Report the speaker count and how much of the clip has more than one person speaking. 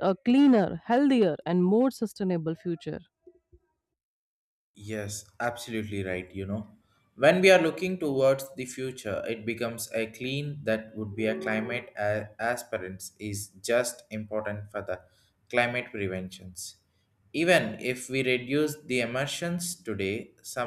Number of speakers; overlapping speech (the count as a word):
two, no overlap